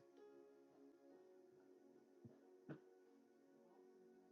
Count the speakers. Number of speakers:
0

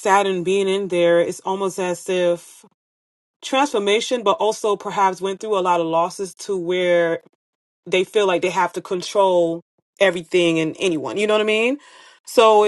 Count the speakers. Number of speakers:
1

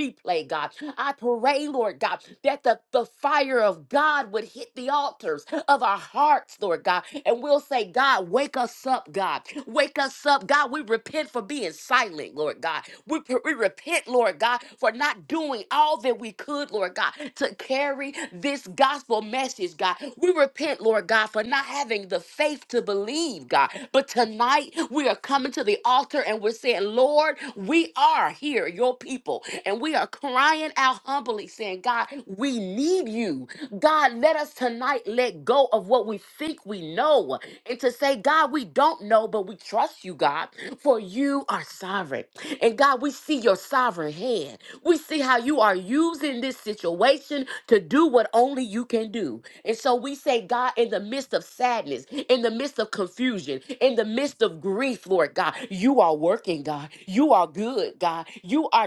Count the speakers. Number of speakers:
1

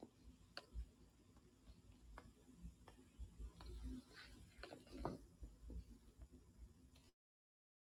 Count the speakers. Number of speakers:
0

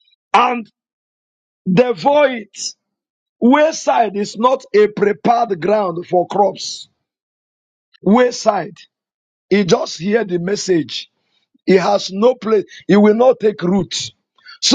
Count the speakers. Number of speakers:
1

